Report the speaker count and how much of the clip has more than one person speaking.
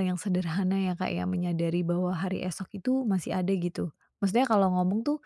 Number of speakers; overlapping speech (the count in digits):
1, no overlap